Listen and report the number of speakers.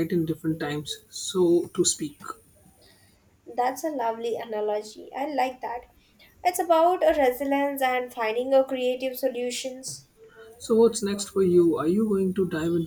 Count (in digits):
2